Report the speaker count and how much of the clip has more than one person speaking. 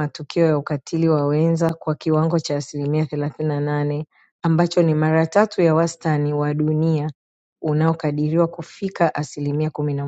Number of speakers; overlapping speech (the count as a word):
one, no overlap